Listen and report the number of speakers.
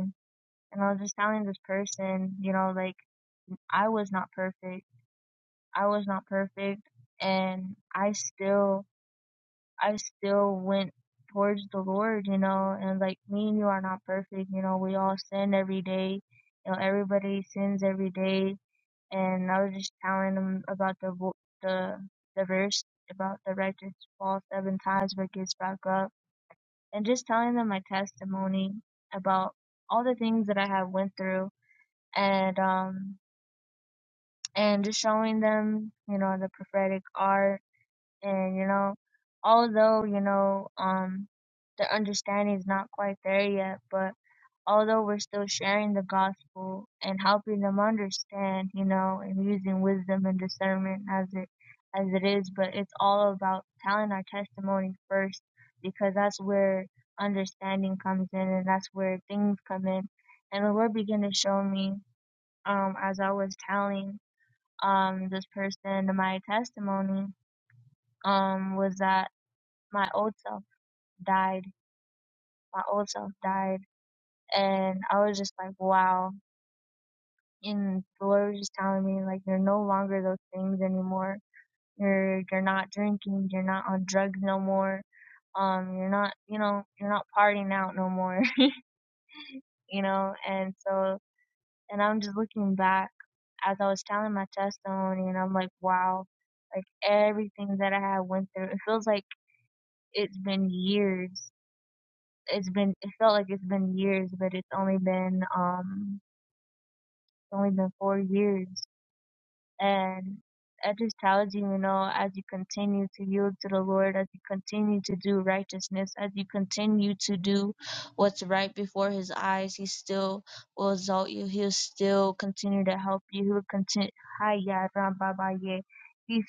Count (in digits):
1